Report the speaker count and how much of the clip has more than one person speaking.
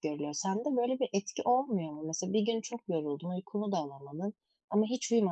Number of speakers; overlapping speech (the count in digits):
1, no overlap